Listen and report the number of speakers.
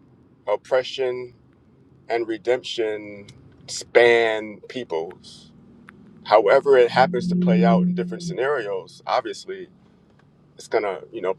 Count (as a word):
one